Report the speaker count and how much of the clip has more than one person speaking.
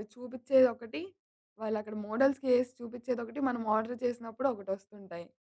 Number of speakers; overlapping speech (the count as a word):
one, no overlap